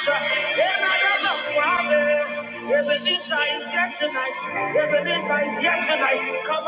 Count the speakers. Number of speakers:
1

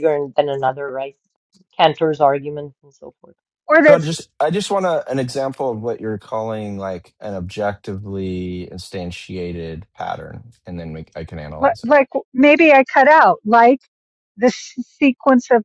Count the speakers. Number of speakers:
3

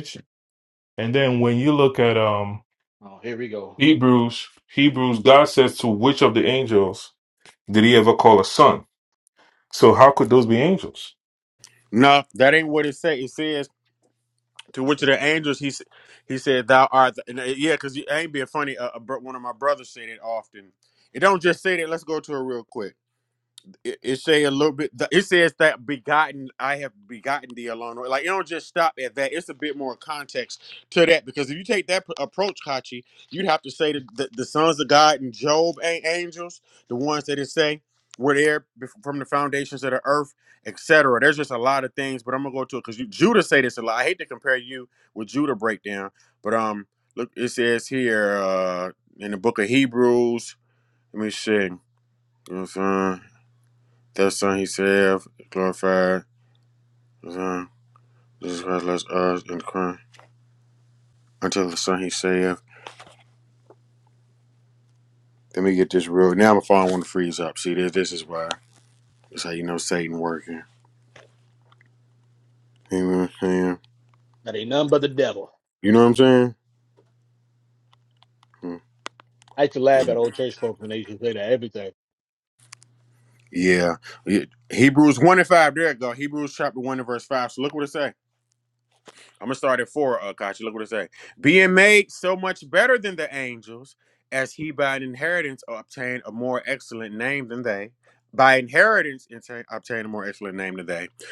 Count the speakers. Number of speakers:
3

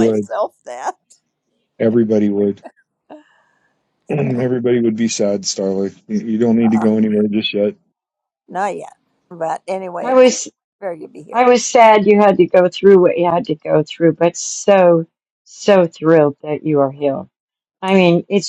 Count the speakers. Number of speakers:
3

